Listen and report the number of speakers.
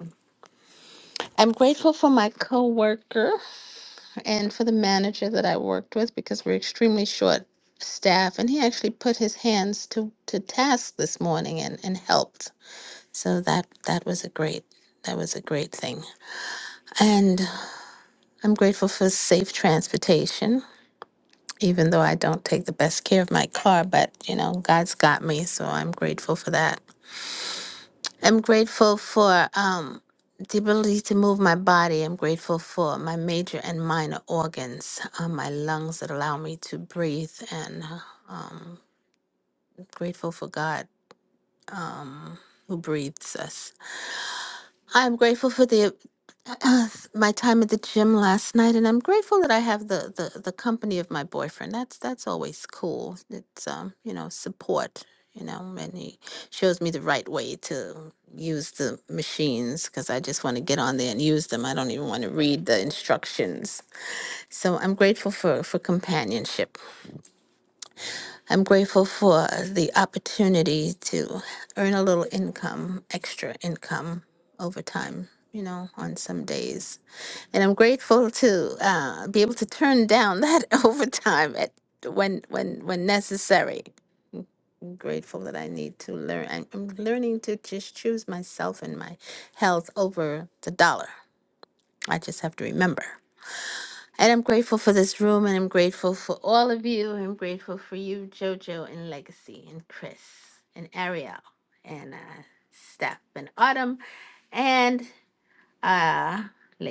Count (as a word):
one